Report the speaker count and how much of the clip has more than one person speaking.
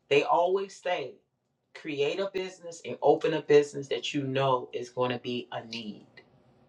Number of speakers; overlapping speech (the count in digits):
1, no overlap